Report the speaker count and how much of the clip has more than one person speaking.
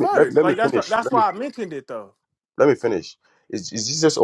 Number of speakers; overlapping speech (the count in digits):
2, about 30%